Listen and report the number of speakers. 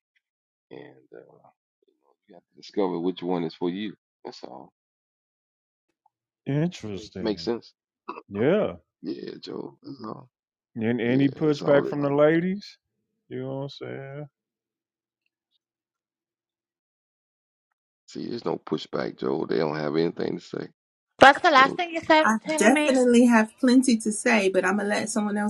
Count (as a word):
four